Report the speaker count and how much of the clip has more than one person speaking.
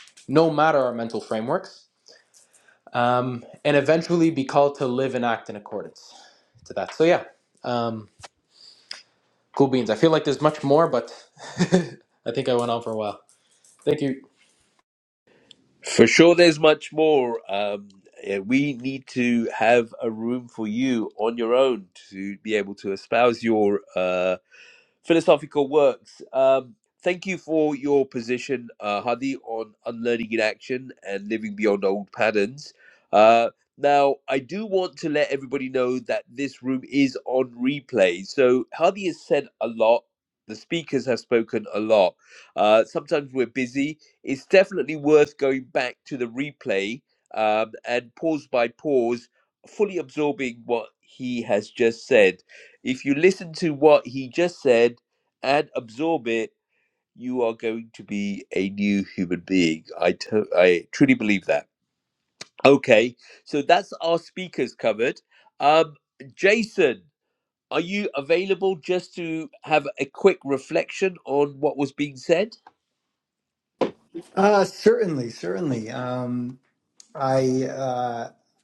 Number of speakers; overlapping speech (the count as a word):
three, no overlap